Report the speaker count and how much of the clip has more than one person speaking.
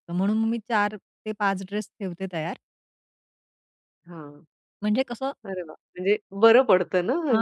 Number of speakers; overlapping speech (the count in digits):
2, about 2%